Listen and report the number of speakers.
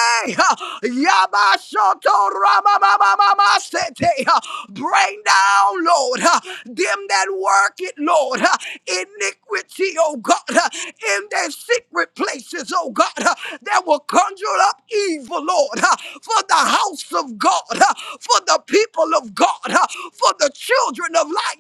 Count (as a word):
one